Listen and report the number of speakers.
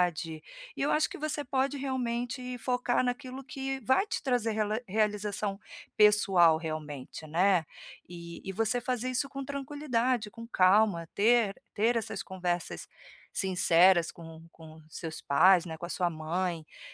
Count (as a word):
one